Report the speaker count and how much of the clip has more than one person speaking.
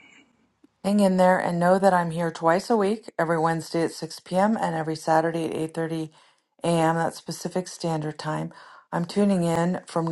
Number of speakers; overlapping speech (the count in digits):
1, no overlap